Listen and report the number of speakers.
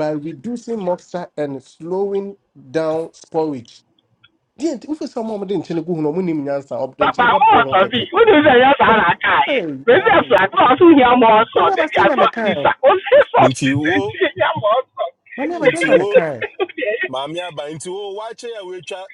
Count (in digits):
3